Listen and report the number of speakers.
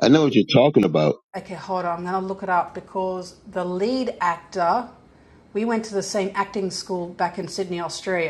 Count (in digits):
2